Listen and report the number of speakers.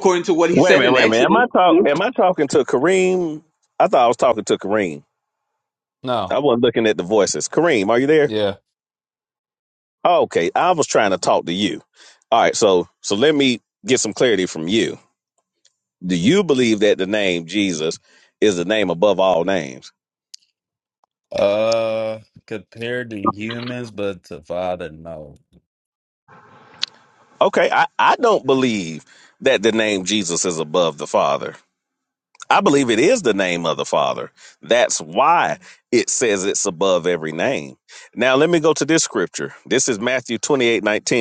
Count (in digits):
3